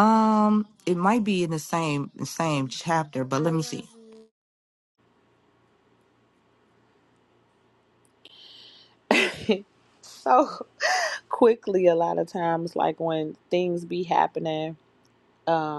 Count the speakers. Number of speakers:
two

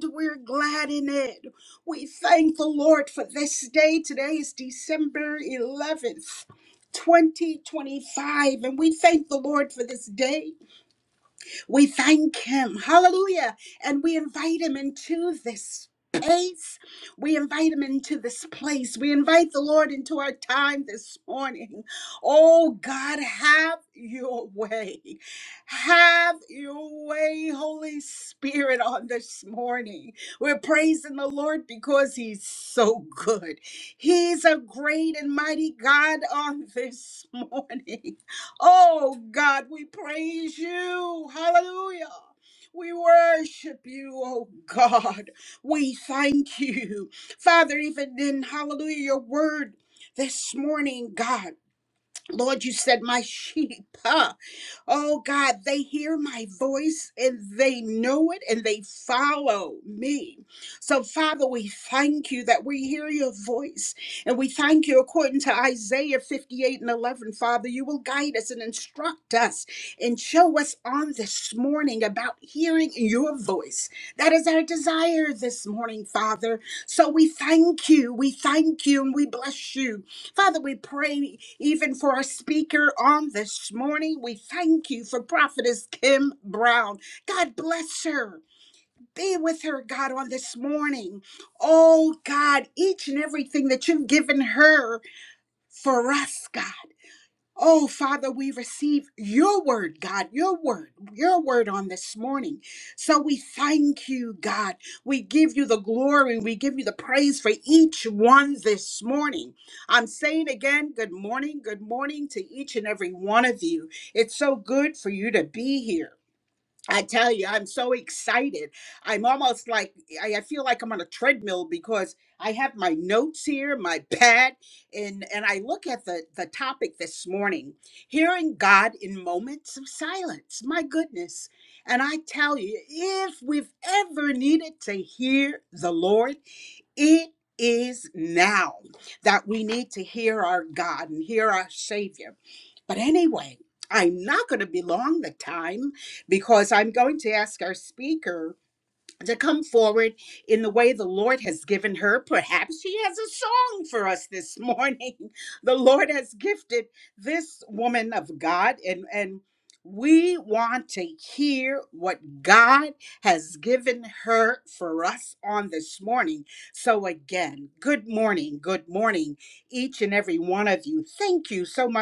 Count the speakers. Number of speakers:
one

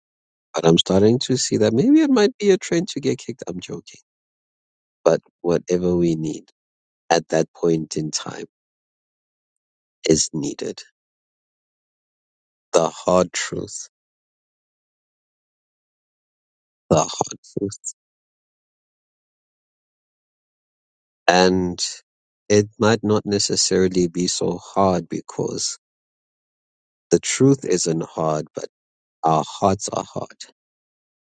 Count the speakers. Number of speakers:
one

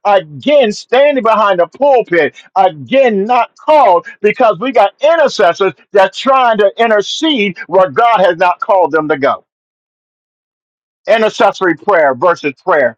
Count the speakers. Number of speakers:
one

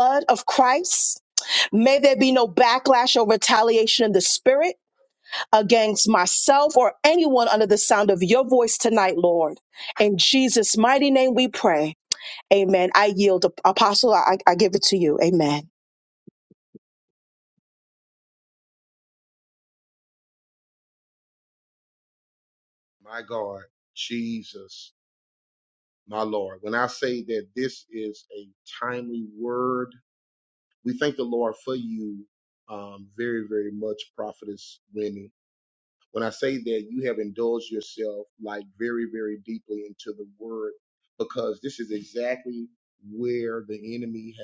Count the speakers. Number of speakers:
two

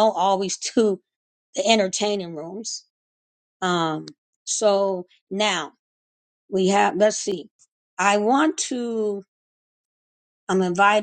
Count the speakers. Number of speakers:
one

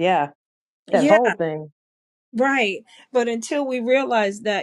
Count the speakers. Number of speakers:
two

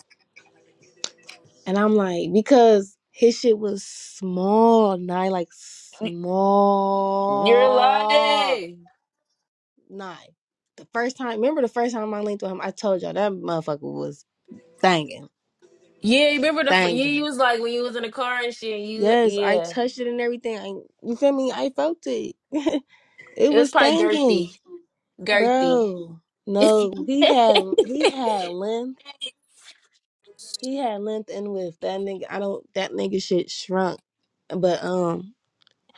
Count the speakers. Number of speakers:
two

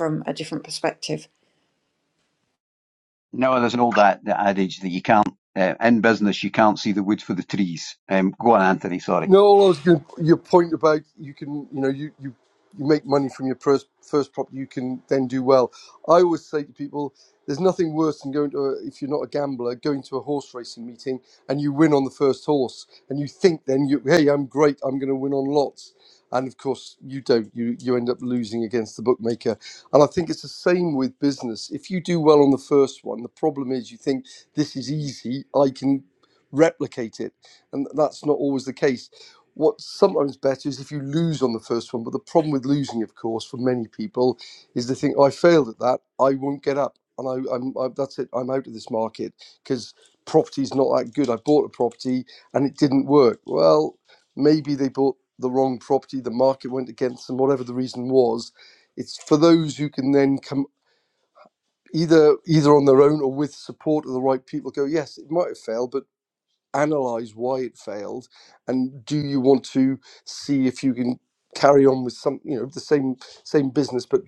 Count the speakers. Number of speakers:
three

